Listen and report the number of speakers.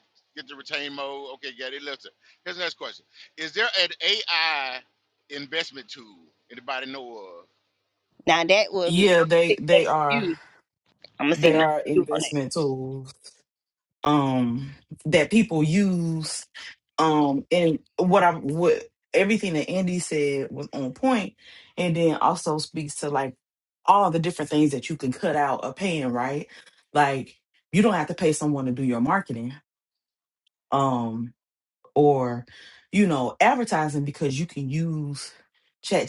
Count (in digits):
3